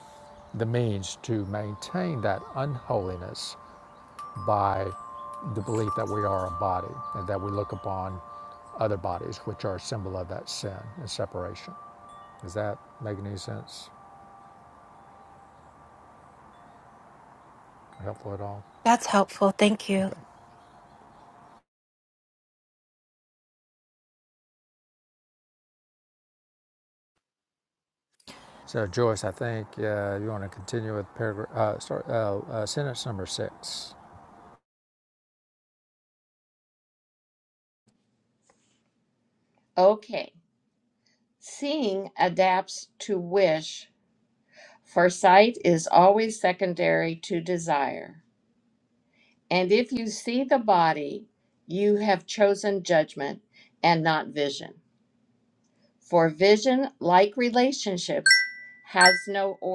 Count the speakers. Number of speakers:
3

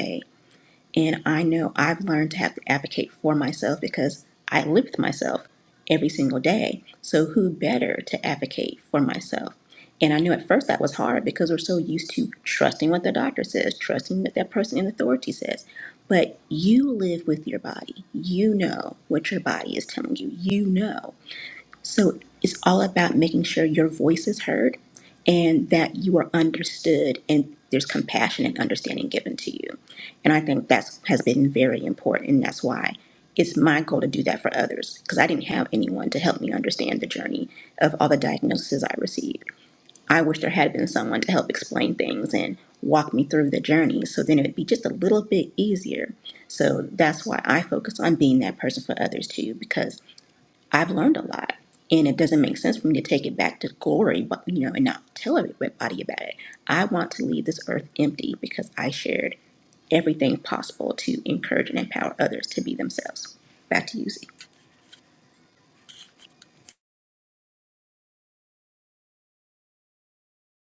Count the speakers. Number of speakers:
1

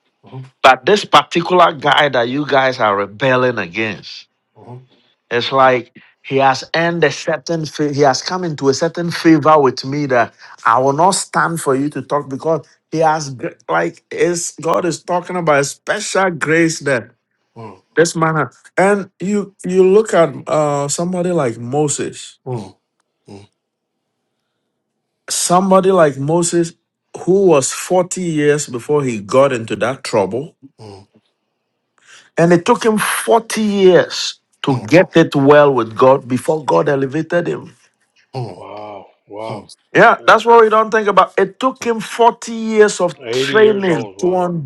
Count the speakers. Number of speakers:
3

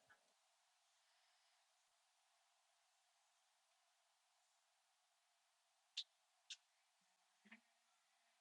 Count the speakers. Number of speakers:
0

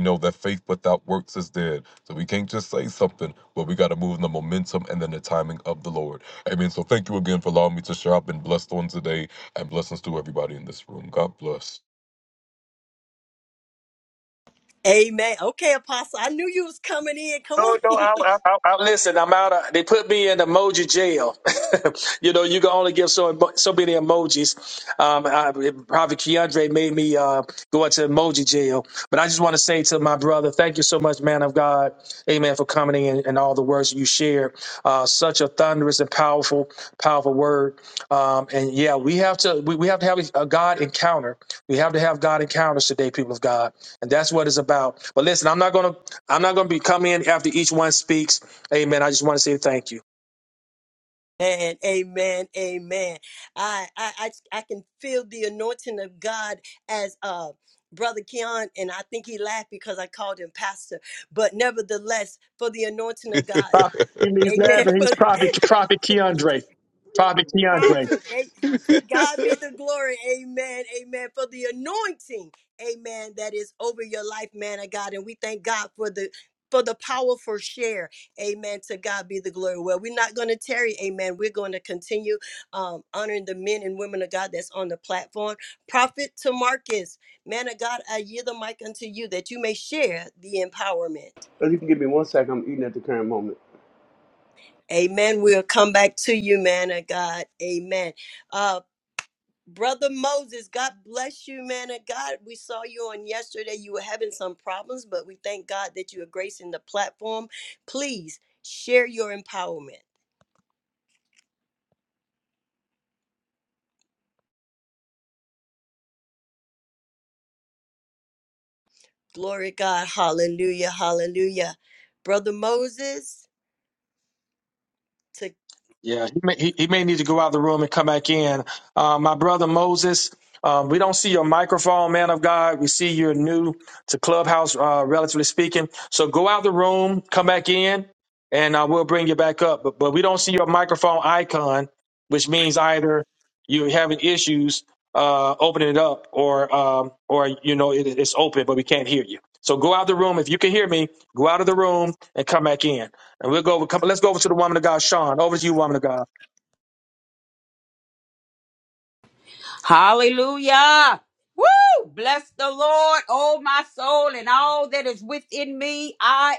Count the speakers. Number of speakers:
5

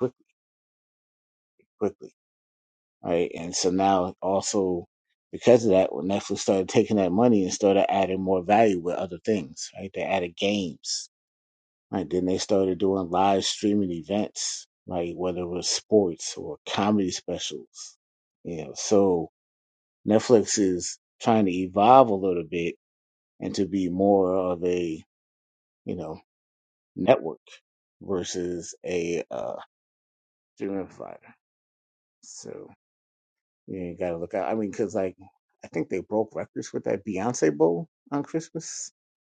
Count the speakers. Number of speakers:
1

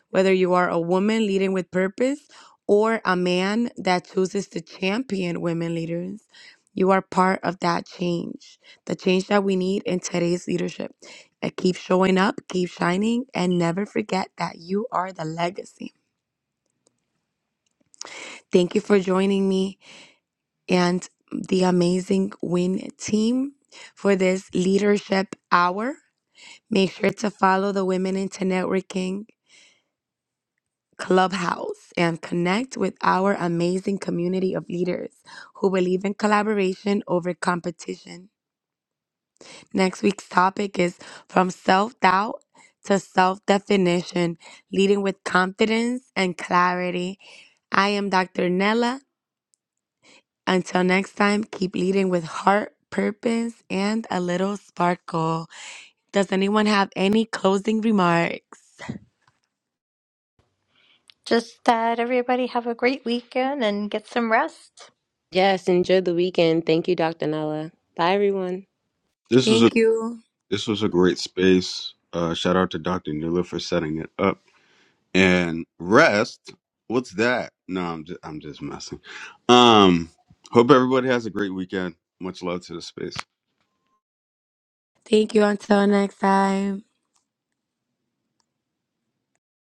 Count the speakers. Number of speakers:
4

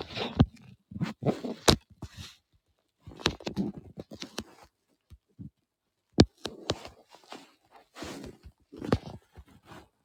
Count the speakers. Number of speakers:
0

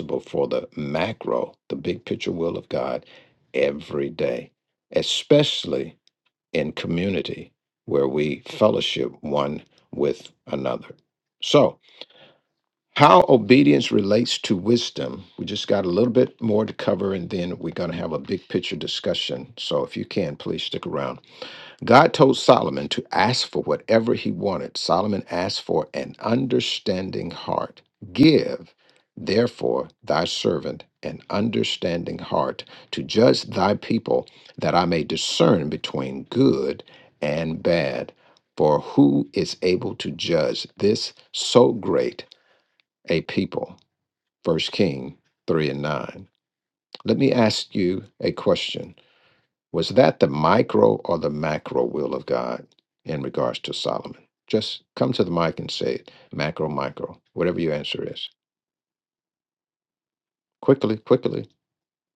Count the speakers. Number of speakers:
1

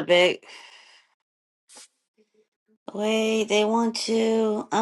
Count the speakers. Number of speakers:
1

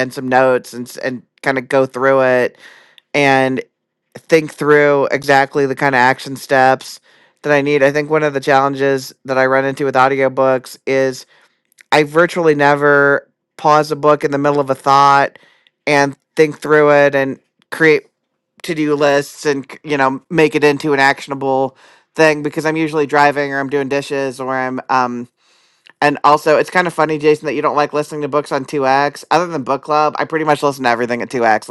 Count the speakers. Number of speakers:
1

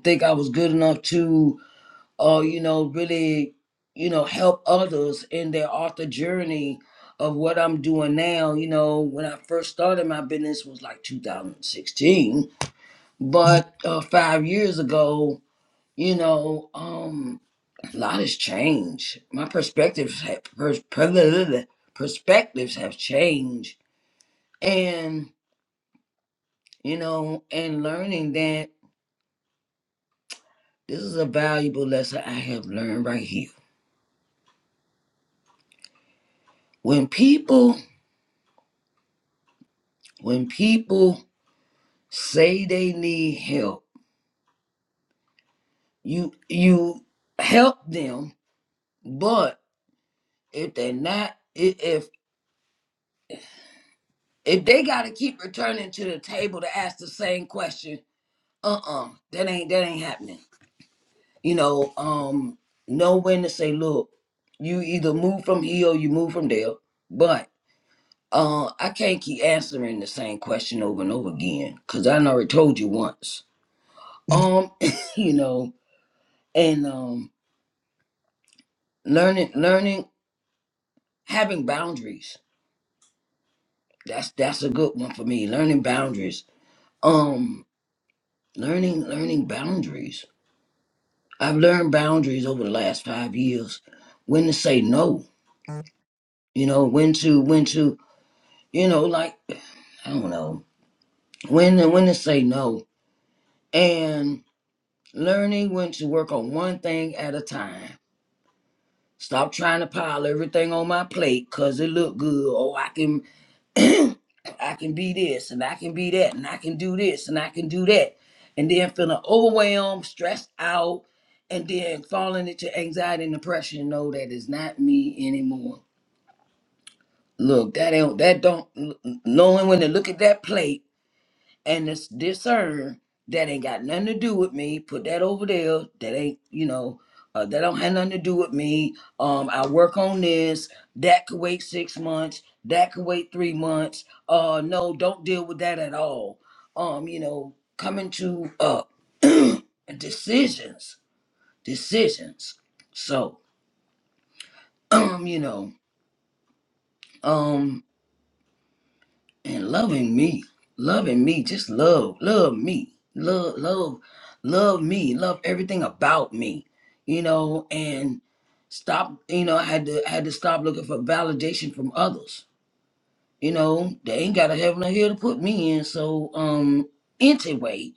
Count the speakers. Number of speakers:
1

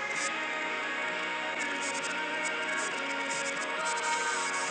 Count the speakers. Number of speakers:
0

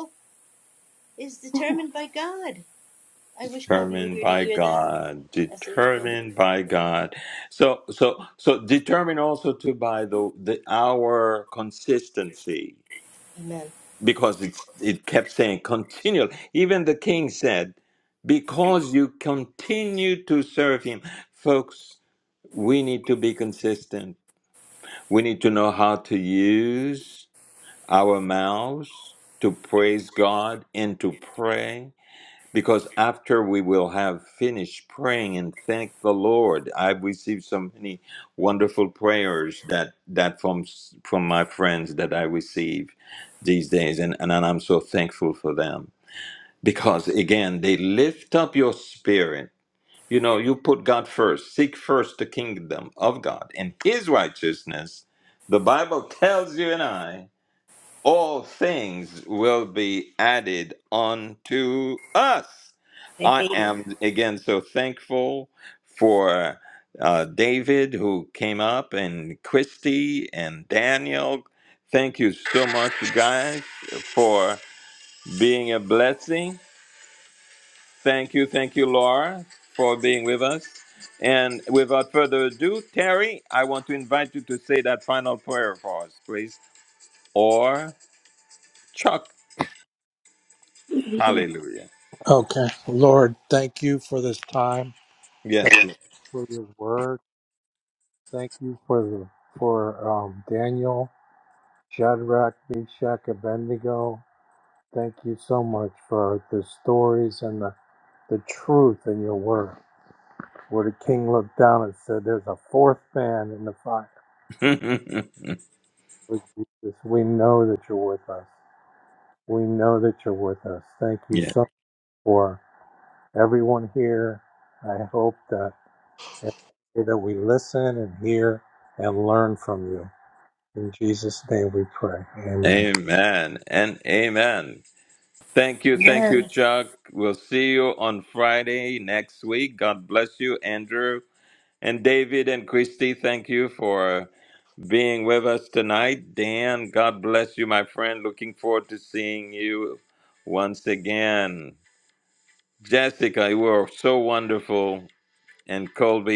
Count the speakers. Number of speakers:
3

